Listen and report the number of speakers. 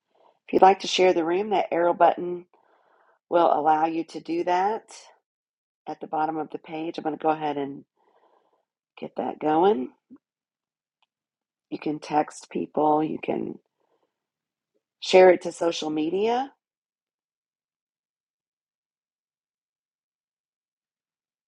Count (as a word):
one